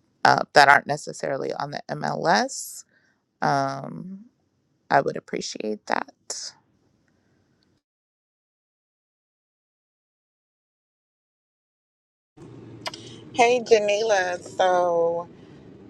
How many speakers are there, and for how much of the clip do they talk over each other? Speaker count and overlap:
two, no overlap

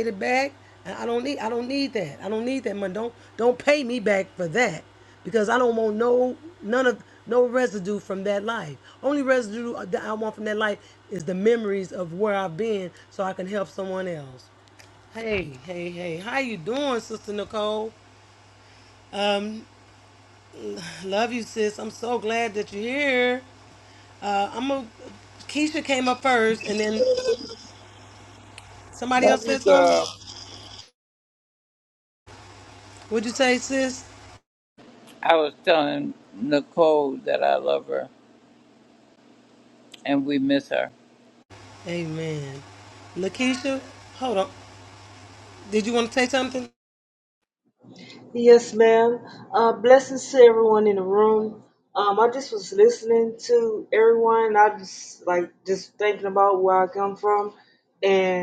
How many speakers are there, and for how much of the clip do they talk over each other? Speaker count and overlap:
three, about 1%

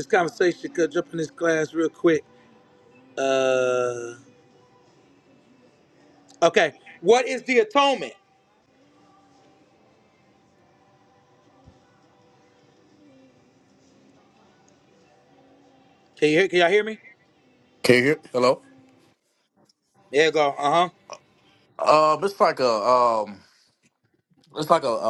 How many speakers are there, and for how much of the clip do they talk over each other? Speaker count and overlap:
two, no overlap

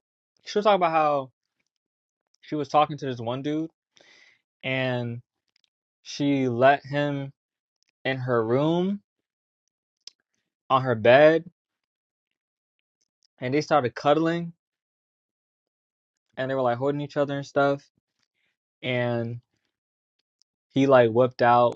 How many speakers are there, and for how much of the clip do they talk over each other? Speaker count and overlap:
one, no overlap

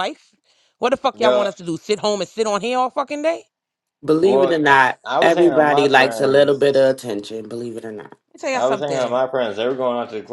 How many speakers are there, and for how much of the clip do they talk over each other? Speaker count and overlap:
three, about 26%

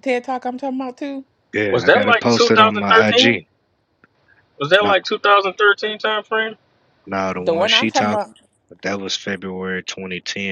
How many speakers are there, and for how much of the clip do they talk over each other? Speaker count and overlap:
three, about 25%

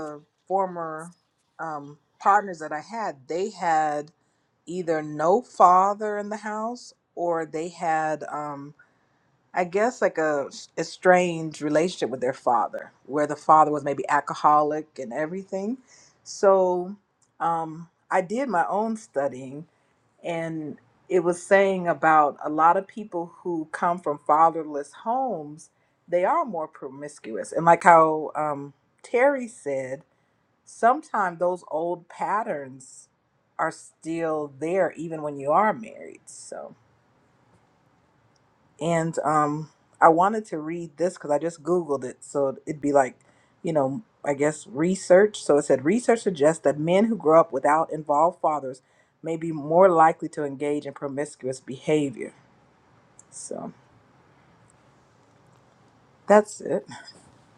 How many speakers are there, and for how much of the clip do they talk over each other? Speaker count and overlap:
one, no overlap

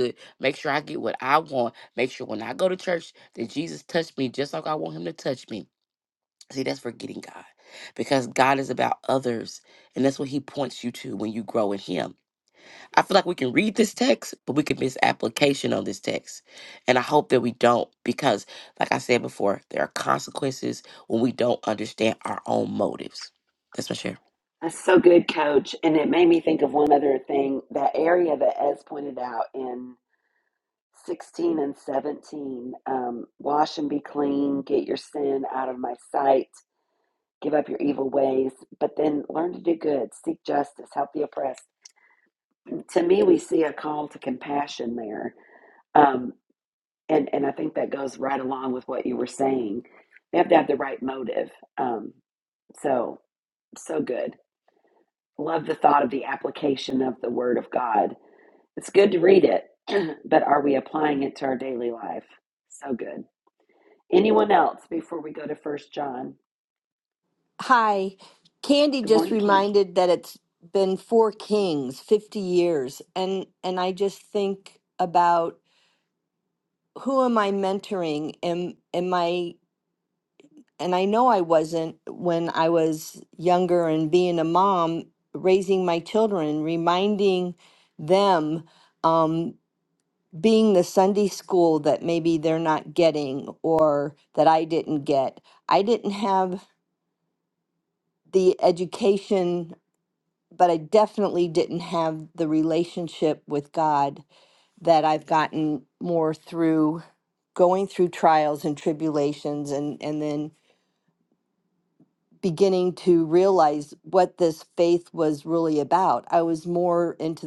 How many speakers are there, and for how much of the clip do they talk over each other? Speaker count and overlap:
three, about 1%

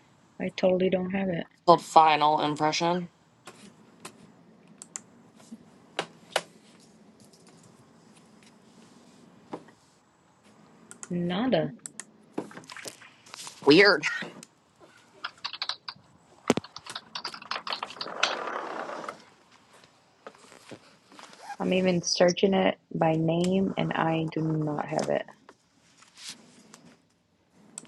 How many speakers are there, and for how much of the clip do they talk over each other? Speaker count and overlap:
two, no overlap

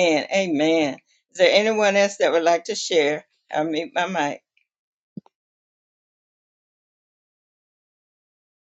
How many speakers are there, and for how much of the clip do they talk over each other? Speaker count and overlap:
one, no overlap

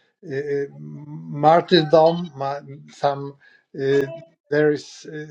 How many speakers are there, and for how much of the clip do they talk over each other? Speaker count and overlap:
one, no overlap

